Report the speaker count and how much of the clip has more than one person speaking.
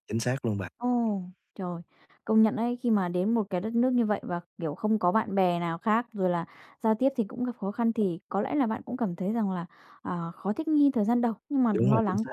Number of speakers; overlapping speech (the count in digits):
2, about 5%